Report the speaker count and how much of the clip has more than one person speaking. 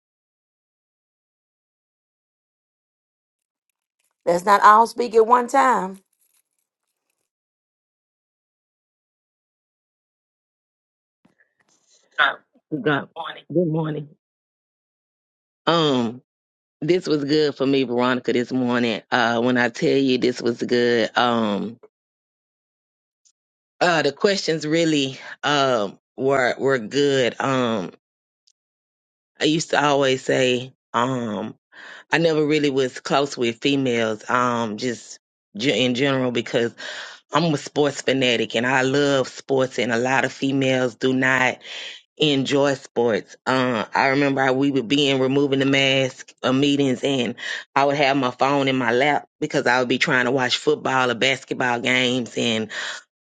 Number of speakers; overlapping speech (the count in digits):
2, no overlap